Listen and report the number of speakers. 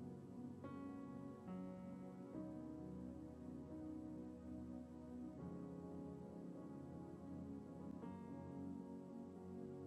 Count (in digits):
0